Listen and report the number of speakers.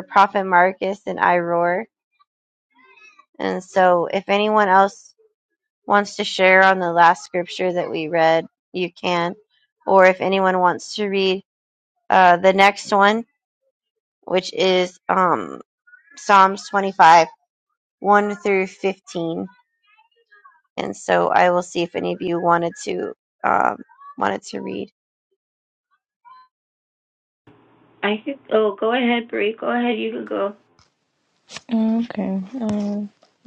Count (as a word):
three